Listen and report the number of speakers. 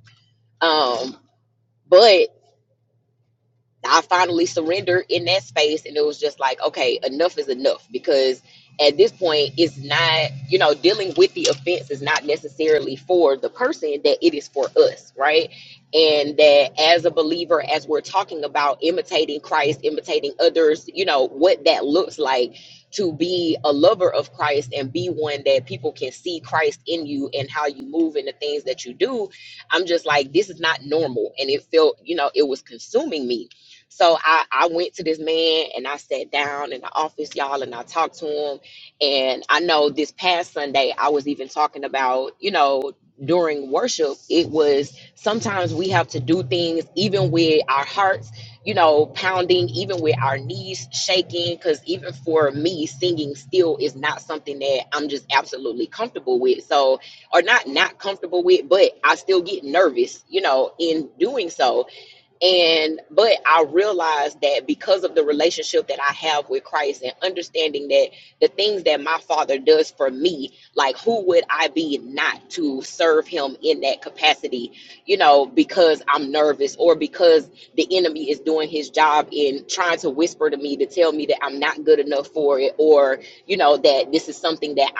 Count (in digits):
1